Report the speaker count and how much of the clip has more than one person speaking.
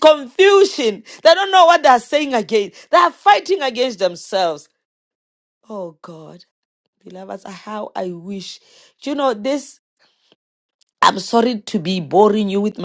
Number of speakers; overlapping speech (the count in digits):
1, no overlap